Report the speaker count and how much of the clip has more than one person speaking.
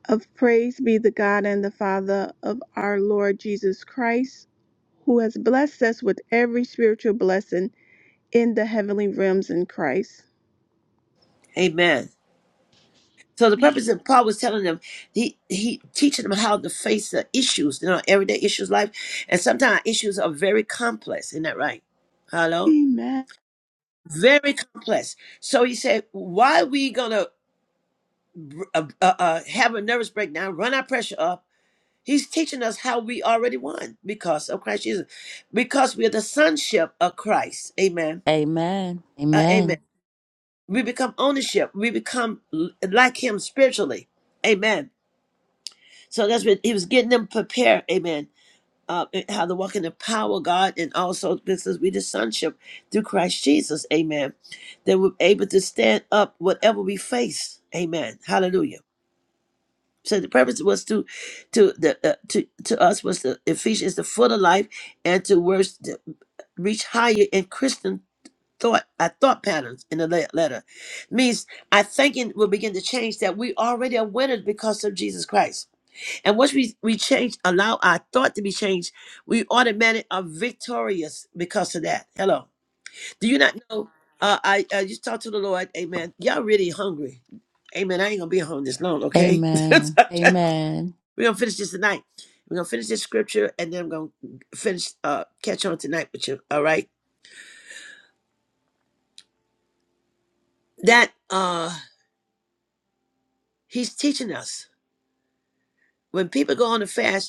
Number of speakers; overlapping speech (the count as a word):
three, under 1%